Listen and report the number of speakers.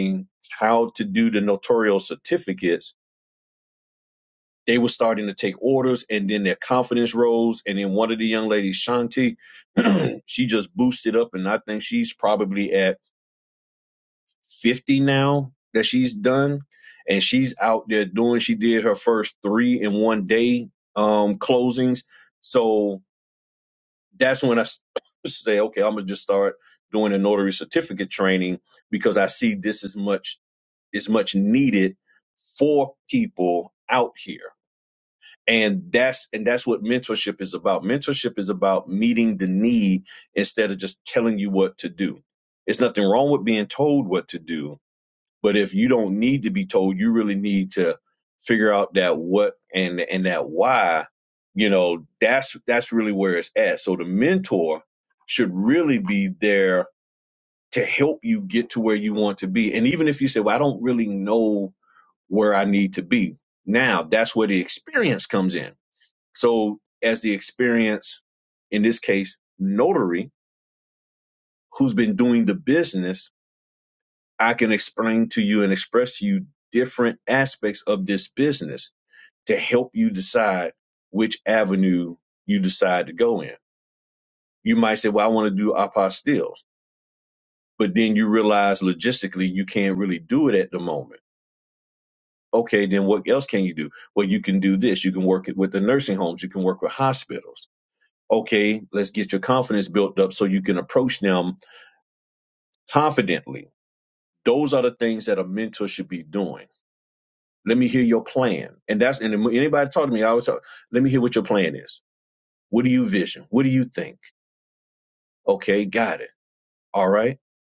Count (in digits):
1